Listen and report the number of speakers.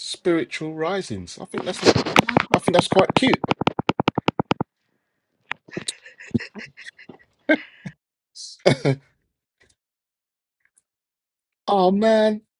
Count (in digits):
1